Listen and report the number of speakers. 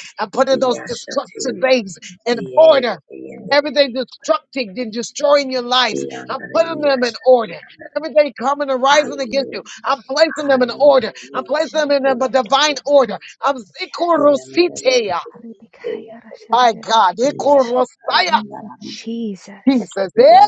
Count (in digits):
3